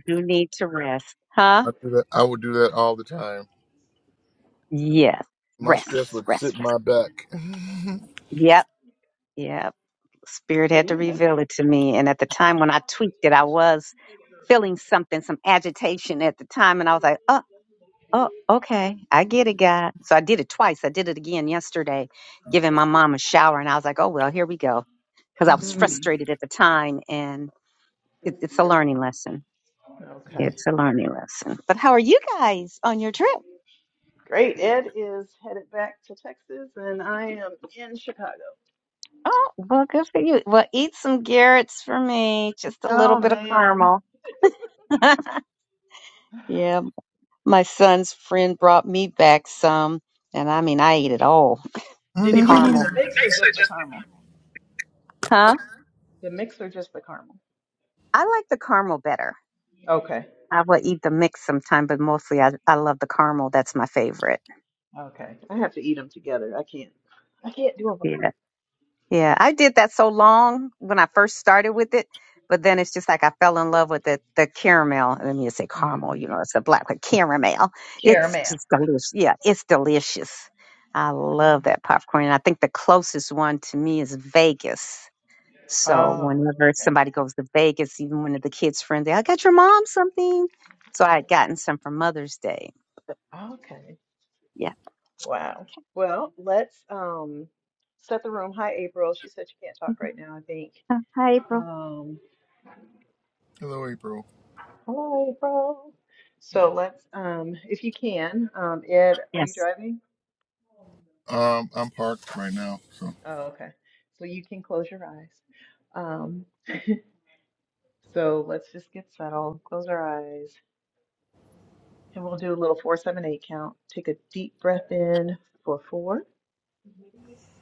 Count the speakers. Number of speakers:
3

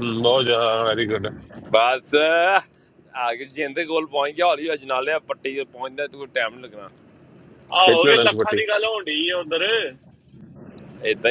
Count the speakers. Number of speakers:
3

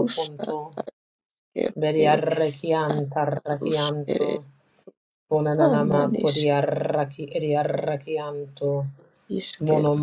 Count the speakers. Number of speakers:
2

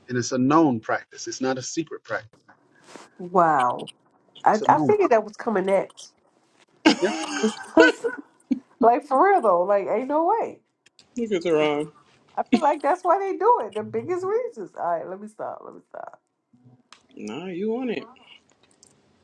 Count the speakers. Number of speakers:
3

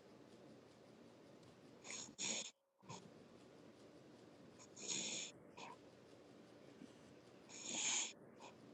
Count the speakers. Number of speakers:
0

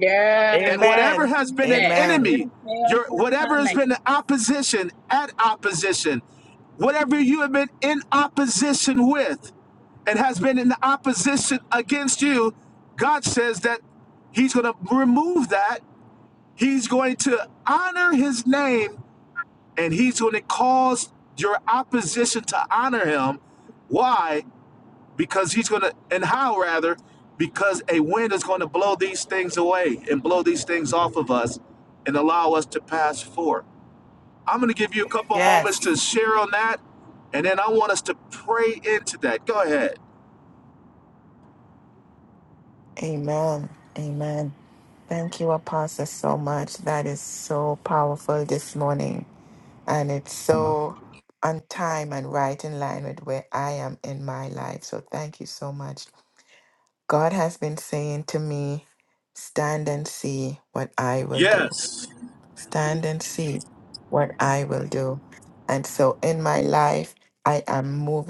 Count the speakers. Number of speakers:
3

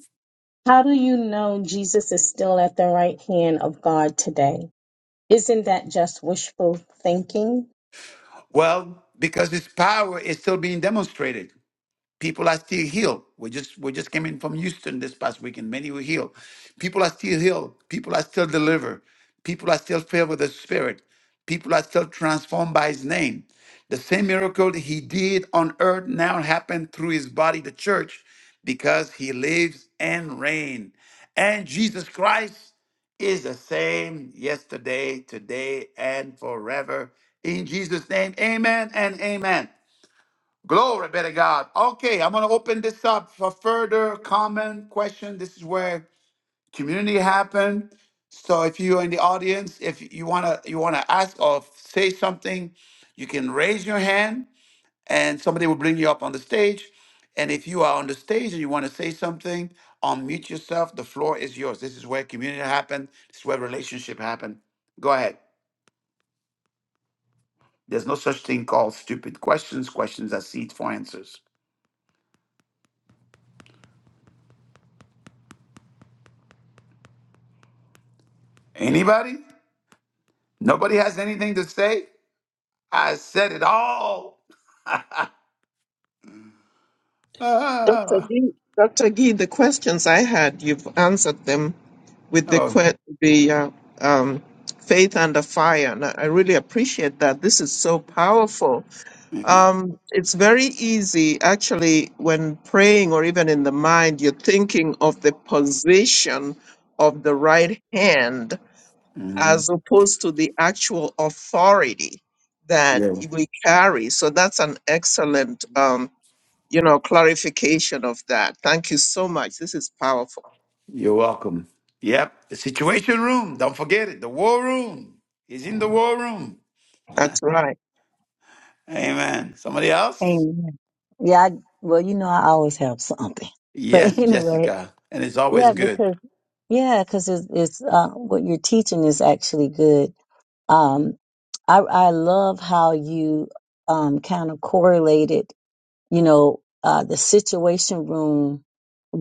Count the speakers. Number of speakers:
4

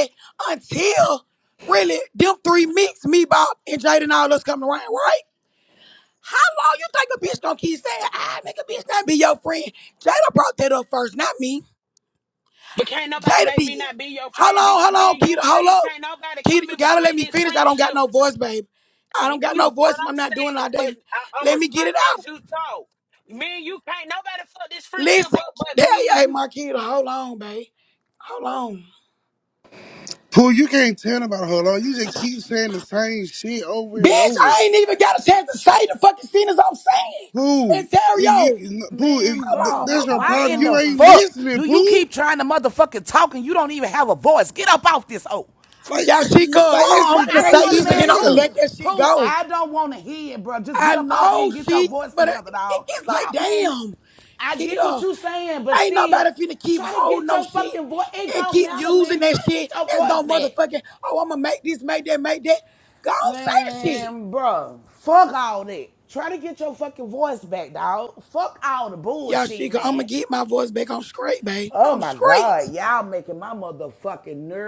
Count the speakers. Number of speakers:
4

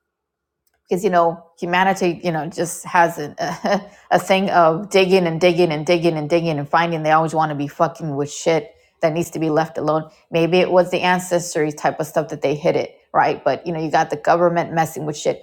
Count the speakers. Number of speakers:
1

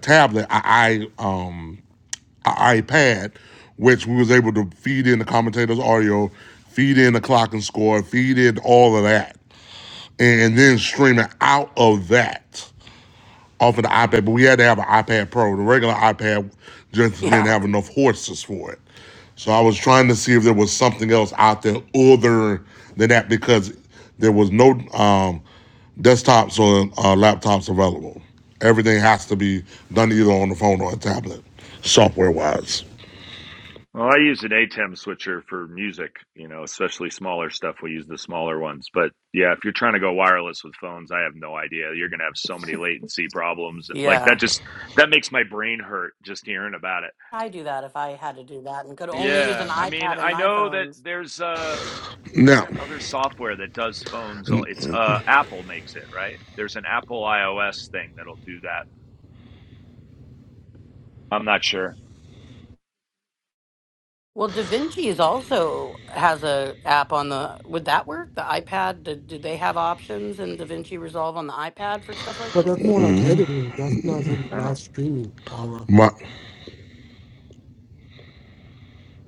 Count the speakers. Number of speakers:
4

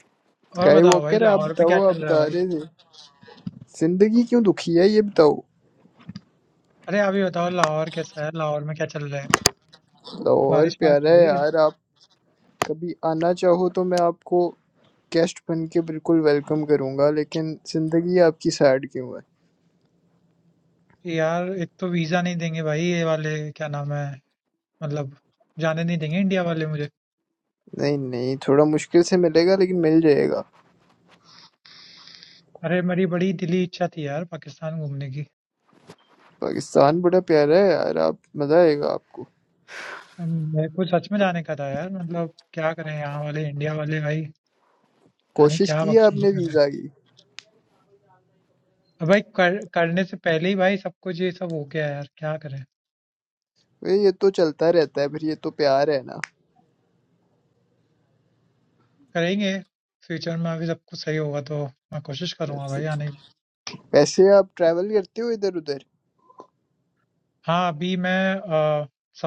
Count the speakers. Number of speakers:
2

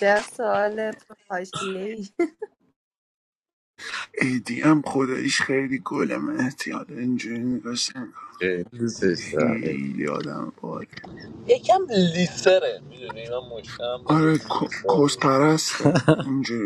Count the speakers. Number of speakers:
4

